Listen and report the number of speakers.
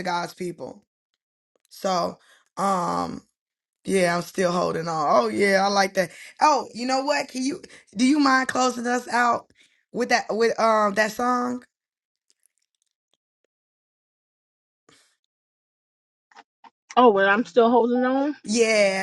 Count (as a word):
two